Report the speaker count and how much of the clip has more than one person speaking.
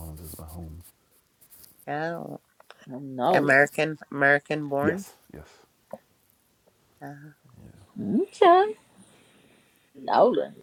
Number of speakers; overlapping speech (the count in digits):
3, about 5%